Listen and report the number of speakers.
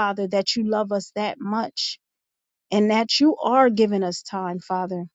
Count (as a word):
one